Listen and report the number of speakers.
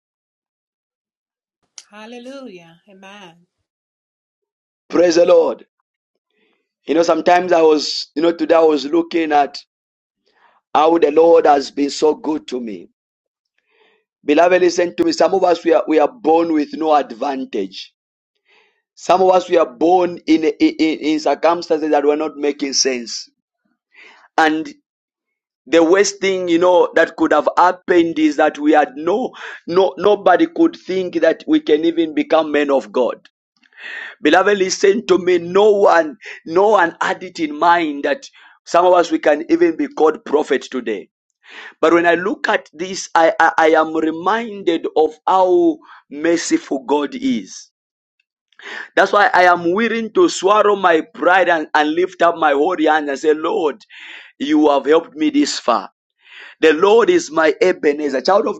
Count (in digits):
2